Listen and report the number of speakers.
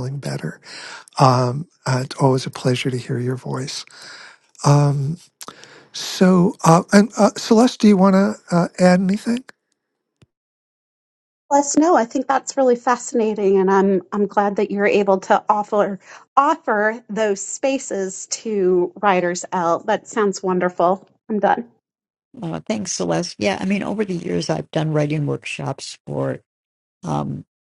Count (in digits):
3